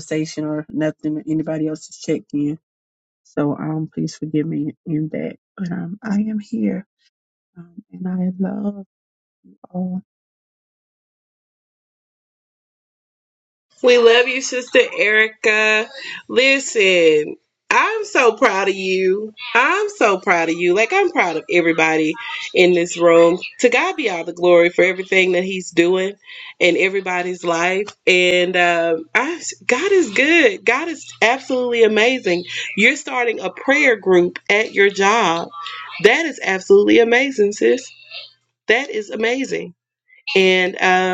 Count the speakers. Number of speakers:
two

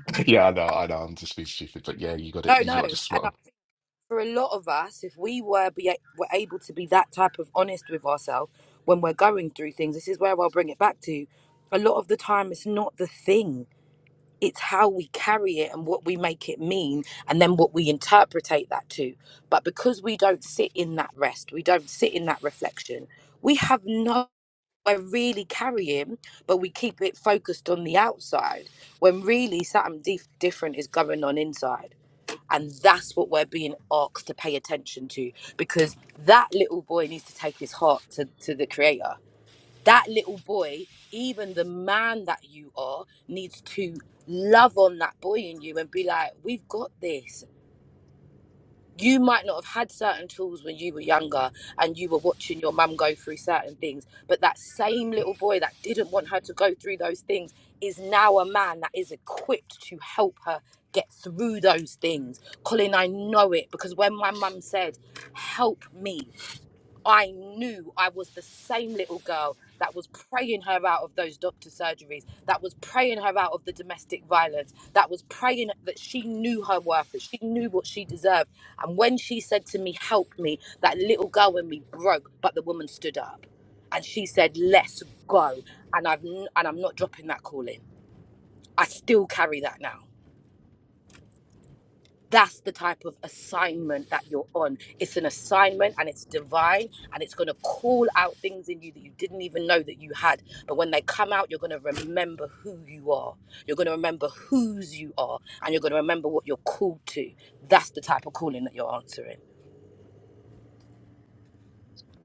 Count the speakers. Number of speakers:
two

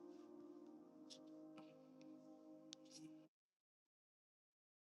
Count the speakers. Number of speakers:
zero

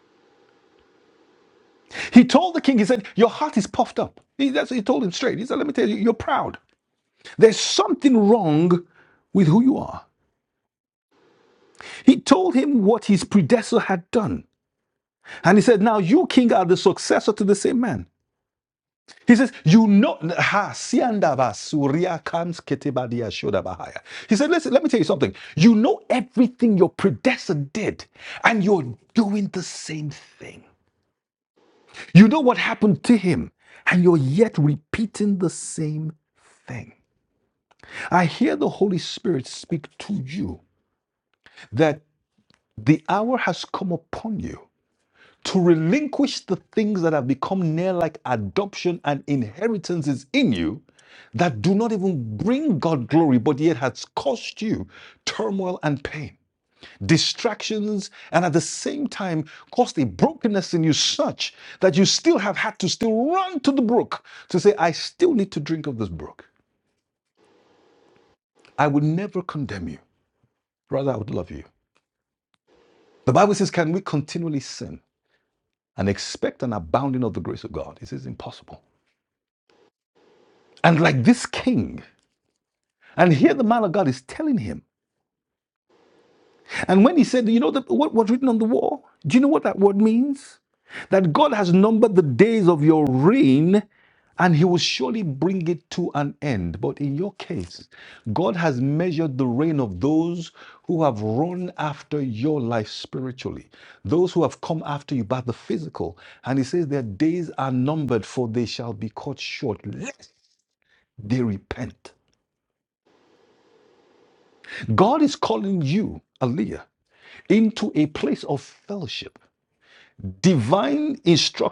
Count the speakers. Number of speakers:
one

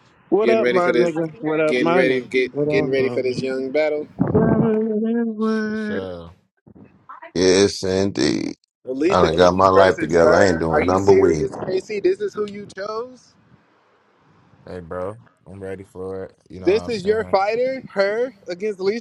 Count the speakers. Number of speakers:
four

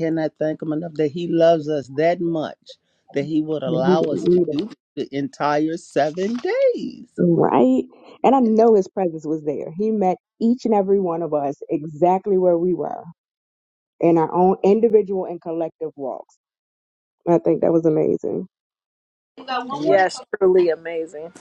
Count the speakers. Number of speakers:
three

